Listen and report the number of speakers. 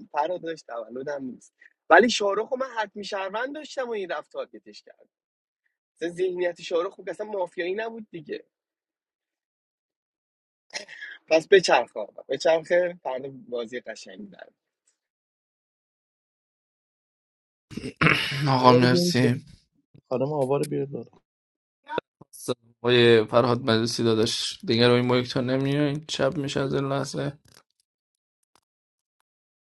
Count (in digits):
3